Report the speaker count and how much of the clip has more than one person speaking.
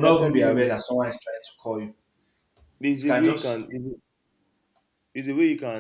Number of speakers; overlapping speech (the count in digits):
2, about 21%